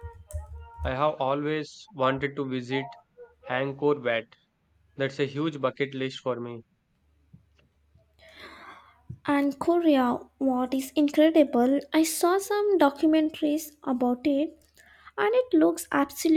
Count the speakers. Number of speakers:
two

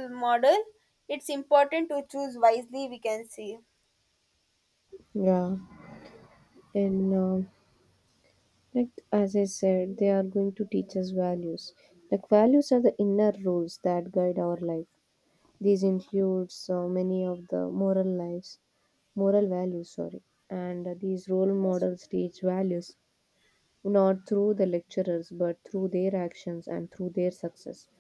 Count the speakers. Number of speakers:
two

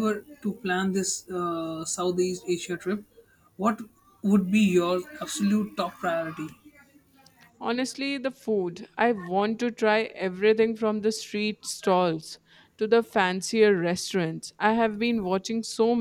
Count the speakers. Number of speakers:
two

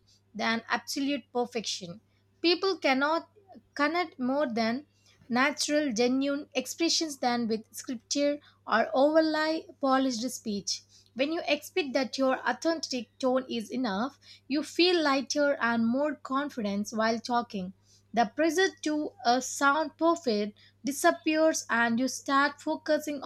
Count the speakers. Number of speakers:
one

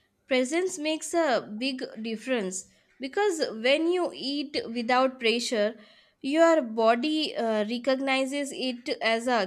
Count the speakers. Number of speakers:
one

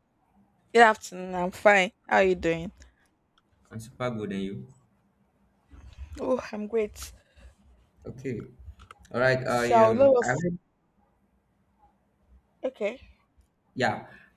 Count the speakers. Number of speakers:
two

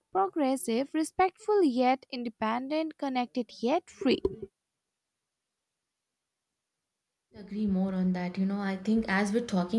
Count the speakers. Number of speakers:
two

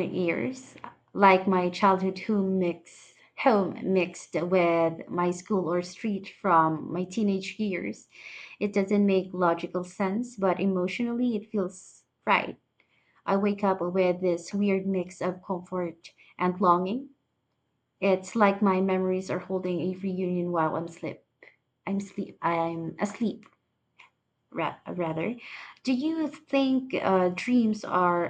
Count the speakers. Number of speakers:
one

